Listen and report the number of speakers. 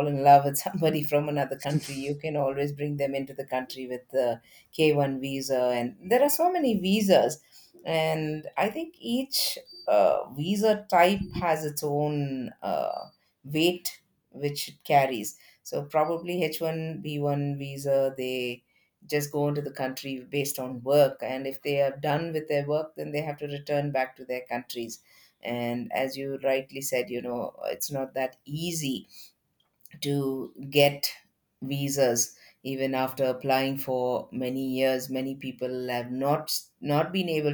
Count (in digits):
1